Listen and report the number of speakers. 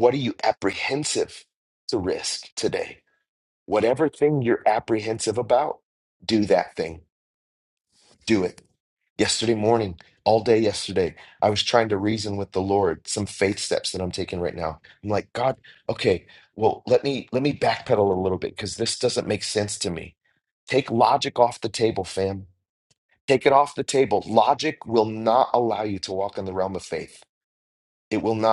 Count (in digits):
1